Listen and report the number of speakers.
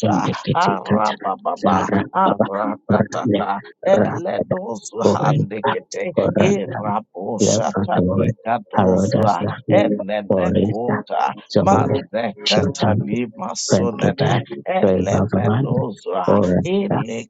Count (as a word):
two